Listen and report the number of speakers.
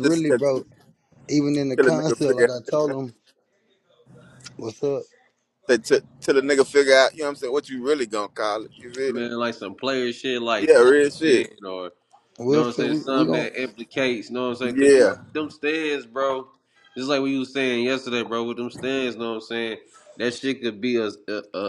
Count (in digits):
3